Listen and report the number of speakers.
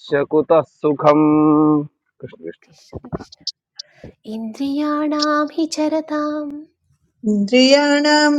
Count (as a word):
three